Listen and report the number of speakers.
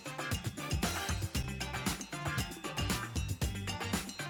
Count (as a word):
zero